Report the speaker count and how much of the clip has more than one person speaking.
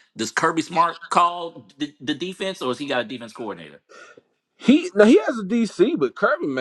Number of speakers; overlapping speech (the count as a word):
two, no overlap